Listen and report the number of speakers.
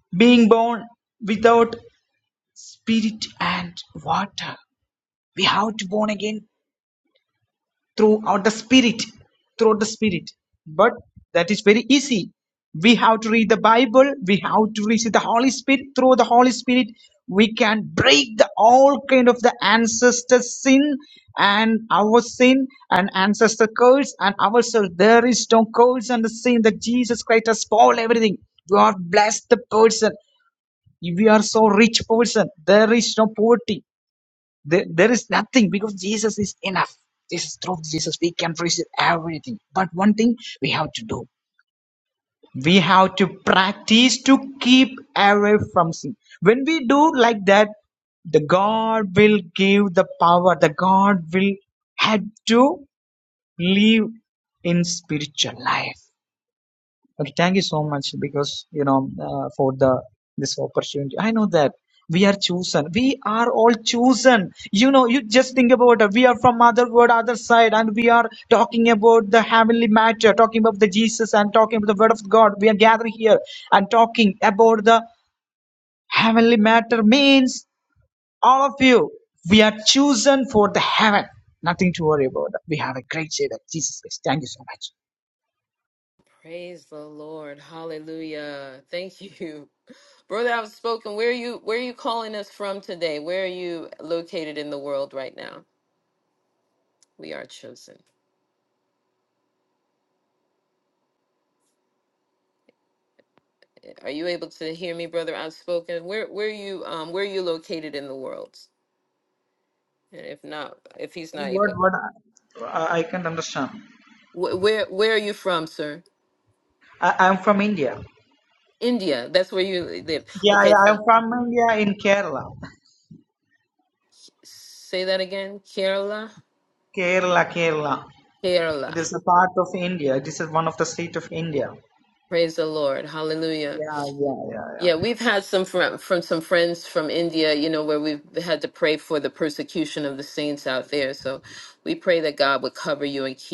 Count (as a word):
two